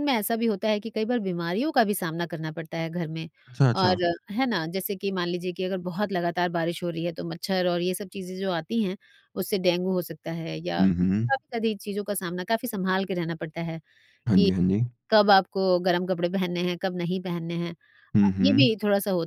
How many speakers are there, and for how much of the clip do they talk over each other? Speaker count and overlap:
two, about 7%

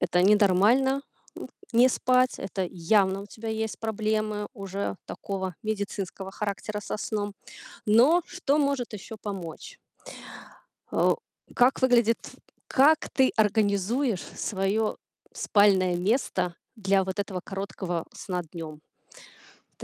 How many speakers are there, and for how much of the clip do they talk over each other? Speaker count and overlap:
one, no overlap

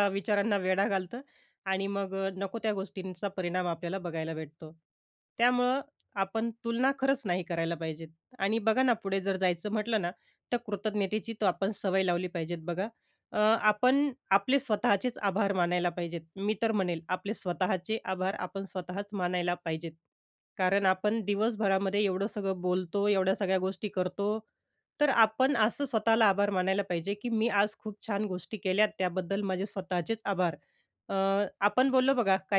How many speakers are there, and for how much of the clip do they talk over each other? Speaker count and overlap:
one, no overlap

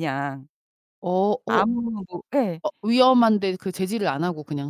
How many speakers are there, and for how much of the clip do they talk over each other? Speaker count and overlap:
two, about 3%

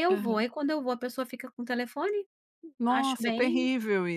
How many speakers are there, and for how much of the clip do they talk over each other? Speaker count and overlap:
two, about 26%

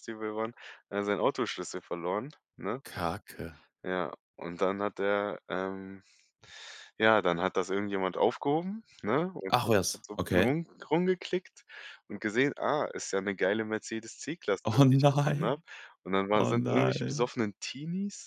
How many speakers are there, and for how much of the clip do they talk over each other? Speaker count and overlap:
two, about 12%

